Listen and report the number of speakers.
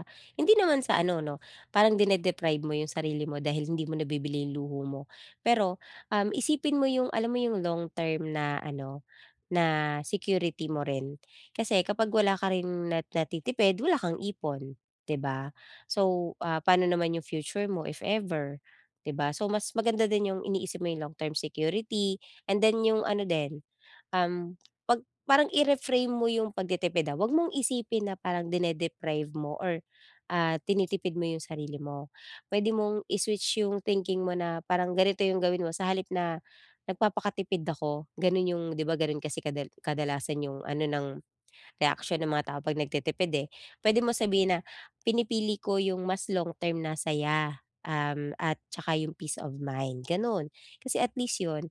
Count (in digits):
1